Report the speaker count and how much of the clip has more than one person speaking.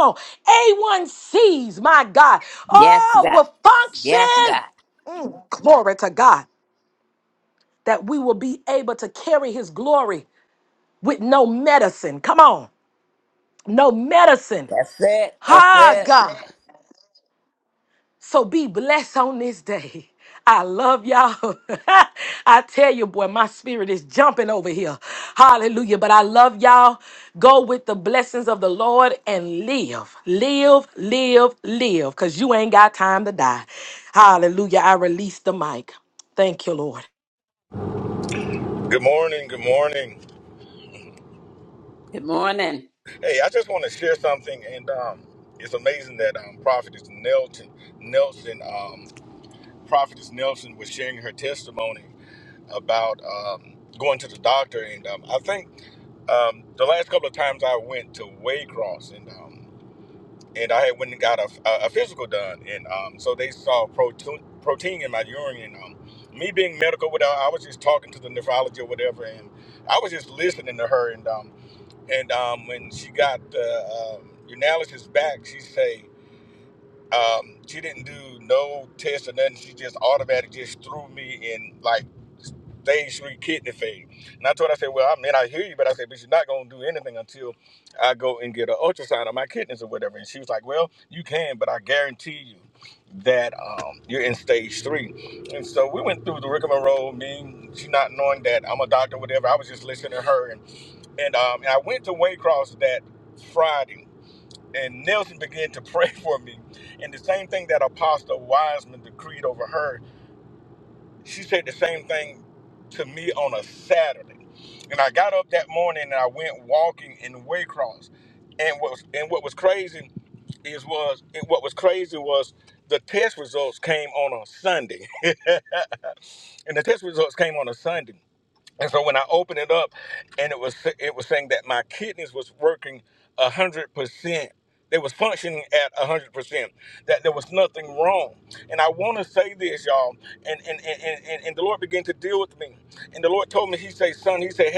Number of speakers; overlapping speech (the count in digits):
3, about 1%